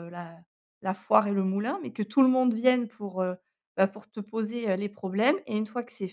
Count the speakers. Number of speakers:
one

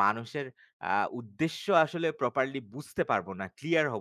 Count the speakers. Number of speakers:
one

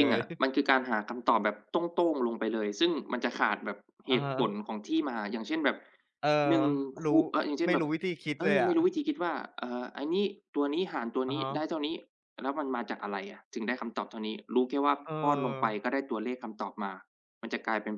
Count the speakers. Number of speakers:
two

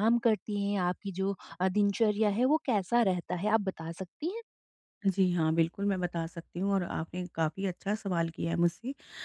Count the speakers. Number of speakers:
two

